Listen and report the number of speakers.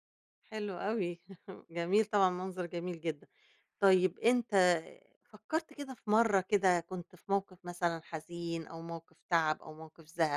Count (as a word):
one